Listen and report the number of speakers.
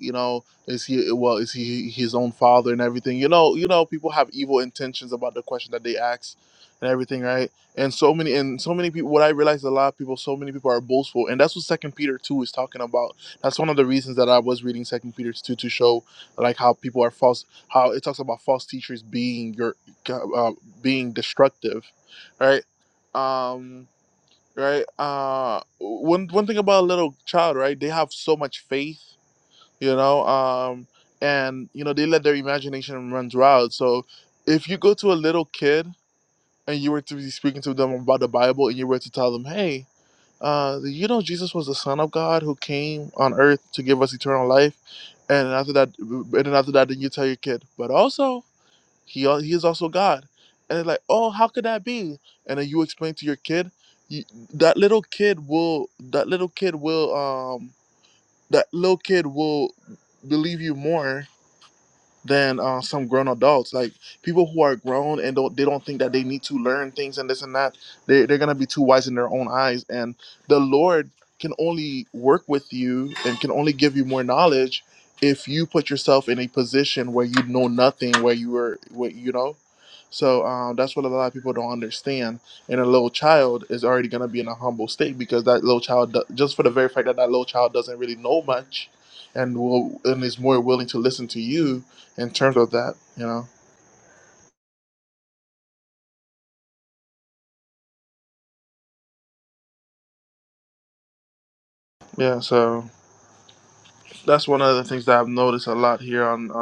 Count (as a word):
one